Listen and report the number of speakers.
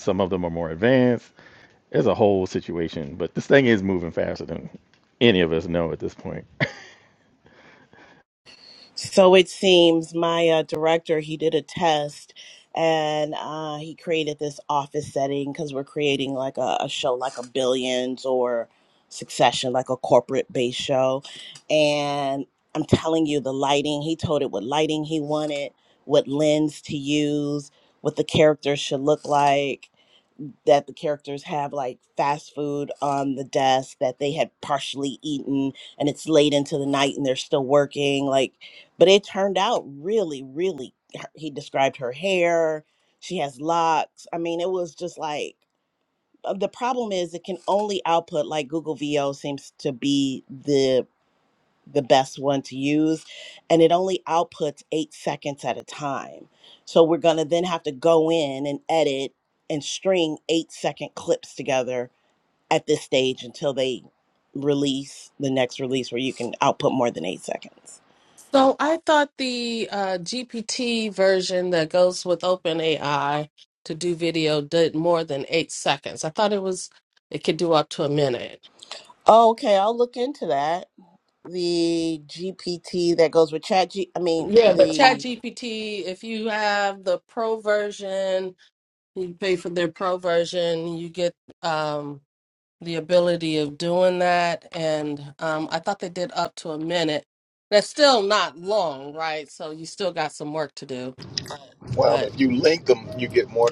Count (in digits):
4